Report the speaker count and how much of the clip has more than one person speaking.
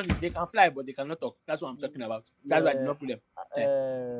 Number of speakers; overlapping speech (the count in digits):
2, about 22%